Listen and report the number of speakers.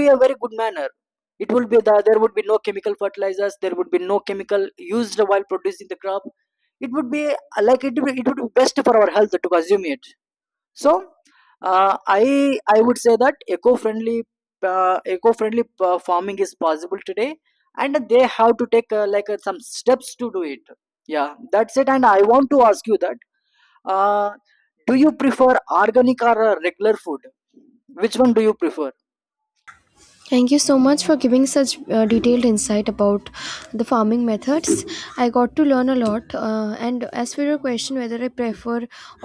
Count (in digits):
2